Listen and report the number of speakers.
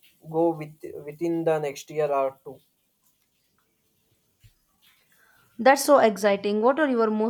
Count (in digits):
2